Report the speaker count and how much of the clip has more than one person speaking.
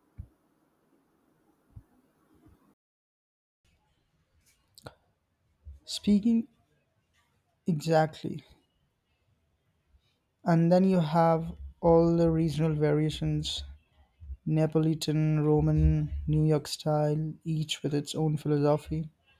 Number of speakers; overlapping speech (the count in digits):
1, no overlap